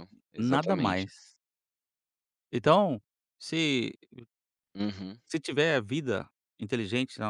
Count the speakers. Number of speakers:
2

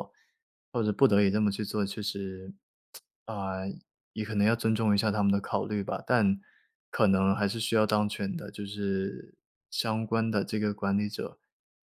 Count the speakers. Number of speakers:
1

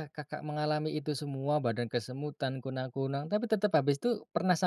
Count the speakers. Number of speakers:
1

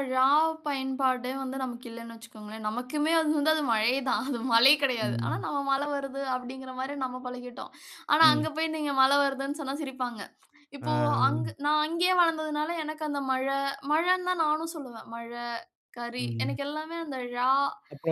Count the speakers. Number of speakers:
2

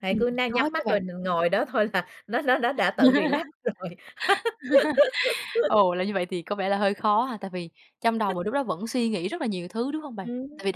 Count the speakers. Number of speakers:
2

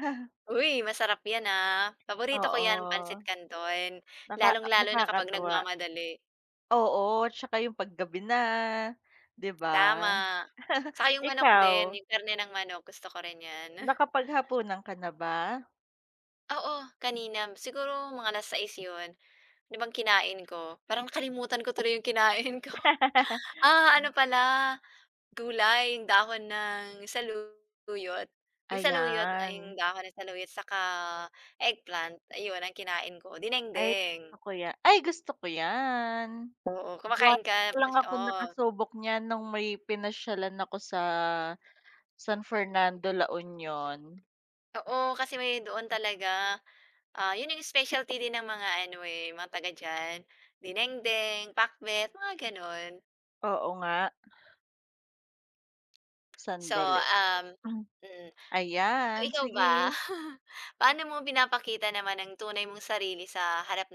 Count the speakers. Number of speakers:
2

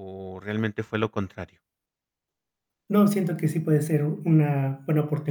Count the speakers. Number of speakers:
2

